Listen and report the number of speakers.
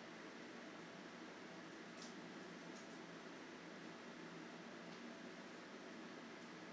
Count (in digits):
0